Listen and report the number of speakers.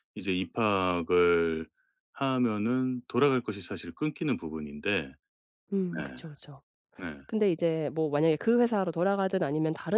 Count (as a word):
two